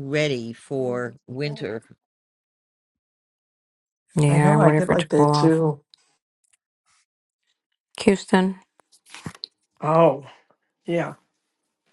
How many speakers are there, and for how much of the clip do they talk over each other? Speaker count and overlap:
three, about 11%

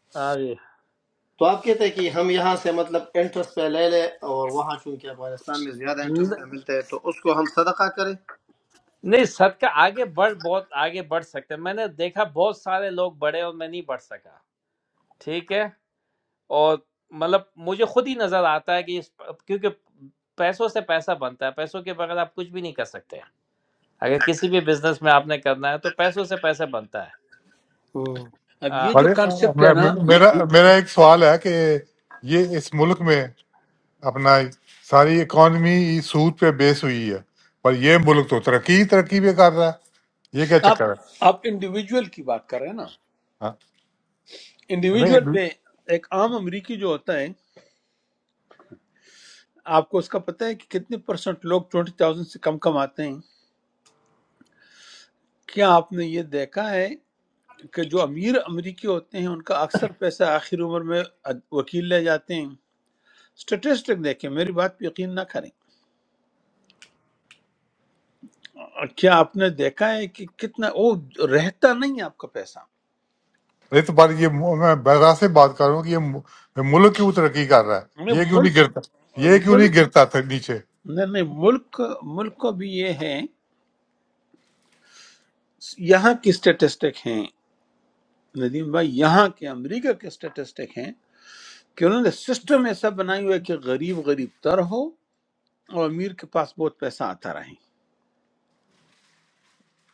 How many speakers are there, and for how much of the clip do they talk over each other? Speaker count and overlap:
four, about 3%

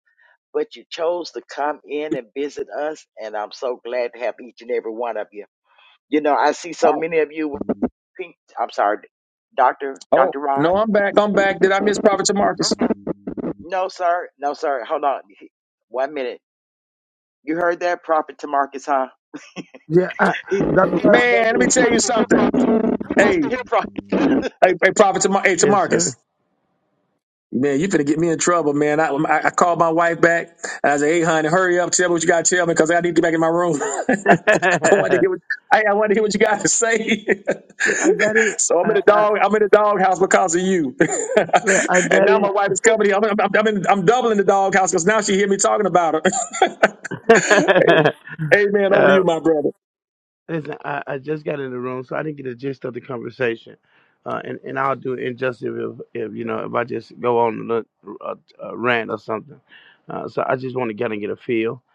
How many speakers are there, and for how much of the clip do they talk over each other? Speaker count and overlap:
three, about 7%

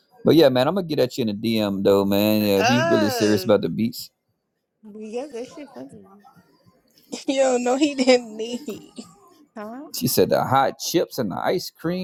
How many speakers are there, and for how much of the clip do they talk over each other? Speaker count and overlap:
three, about 8%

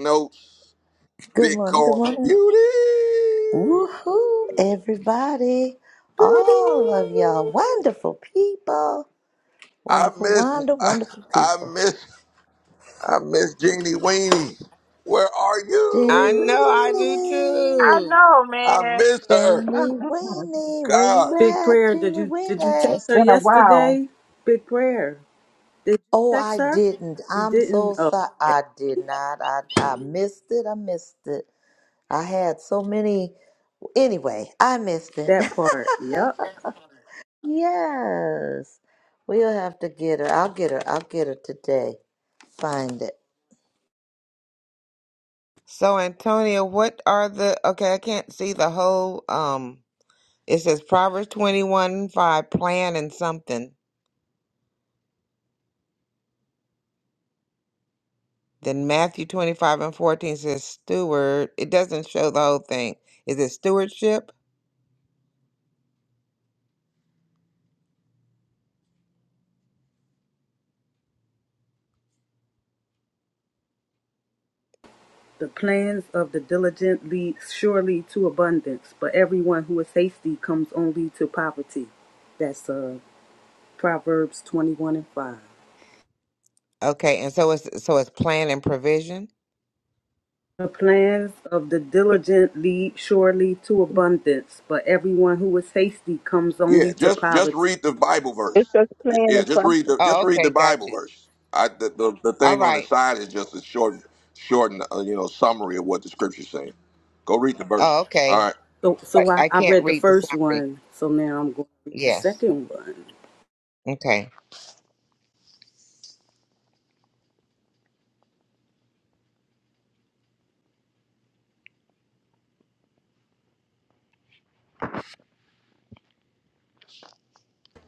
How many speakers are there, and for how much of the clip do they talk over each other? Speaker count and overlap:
five, about 12%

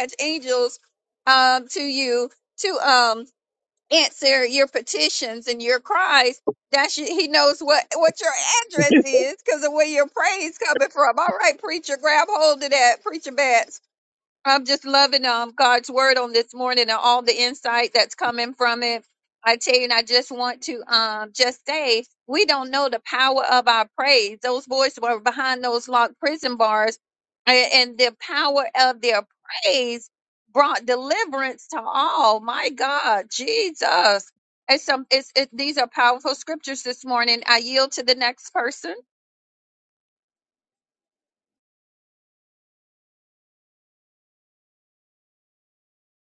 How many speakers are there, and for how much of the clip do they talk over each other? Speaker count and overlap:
one, no overlap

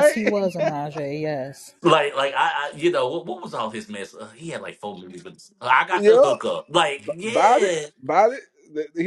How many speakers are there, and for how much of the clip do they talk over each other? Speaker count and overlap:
three, about 13%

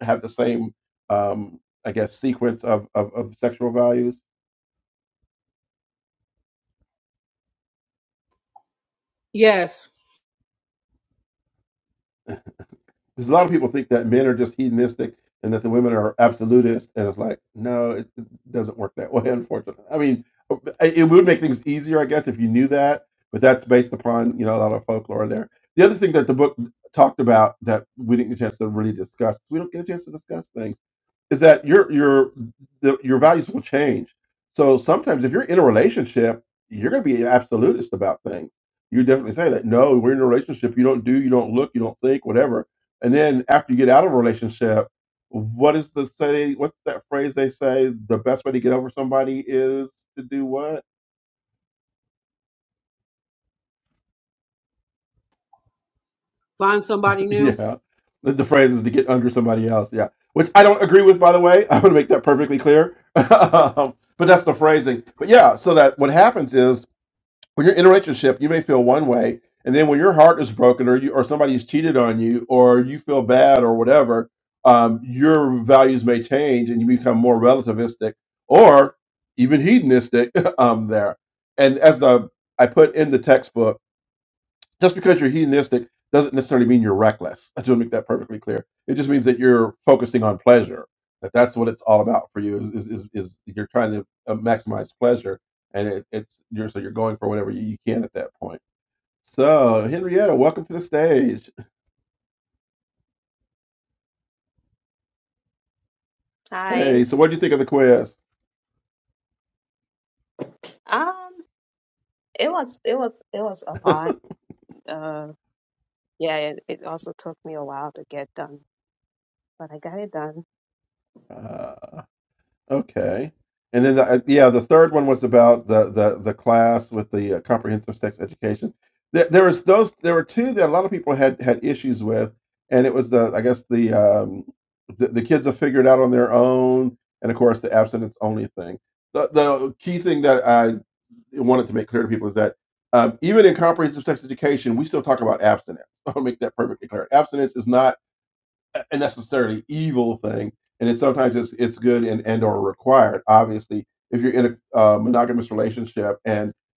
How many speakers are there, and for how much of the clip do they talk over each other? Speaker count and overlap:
three, under 1%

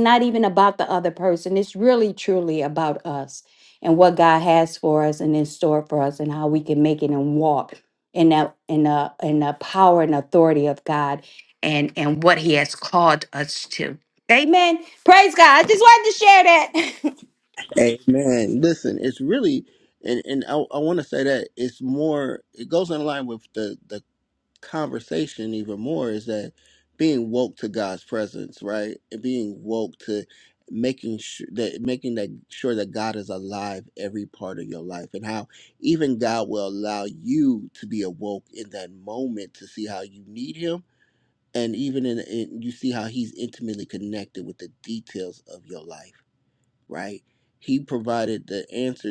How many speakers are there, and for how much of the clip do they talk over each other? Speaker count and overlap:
two, no overlap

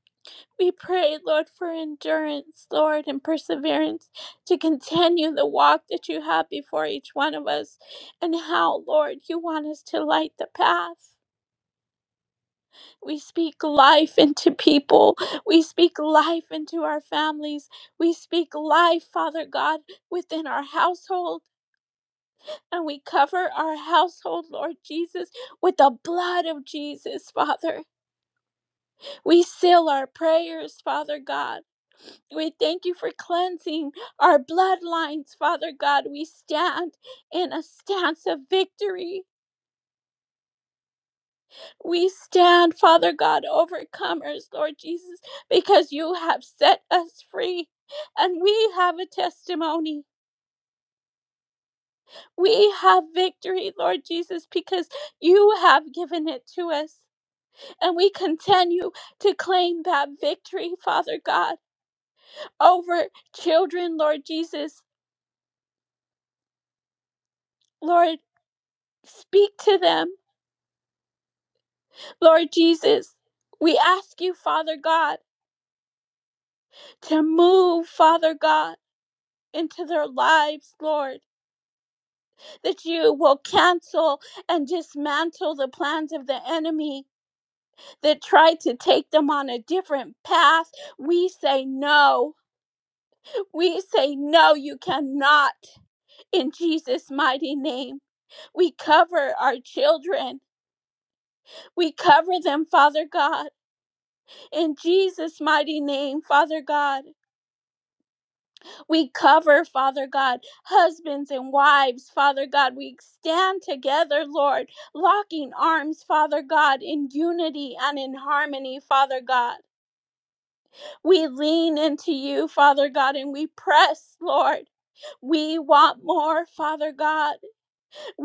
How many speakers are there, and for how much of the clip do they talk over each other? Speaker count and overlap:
one, no overlap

